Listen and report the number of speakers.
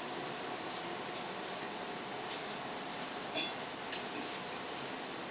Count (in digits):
0